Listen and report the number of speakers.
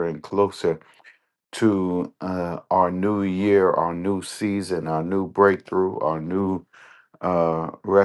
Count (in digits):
1